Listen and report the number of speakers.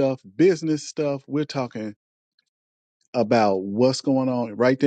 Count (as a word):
one